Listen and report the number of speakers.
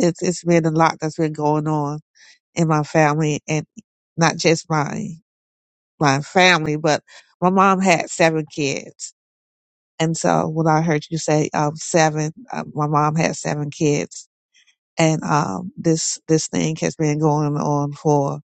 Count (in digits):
1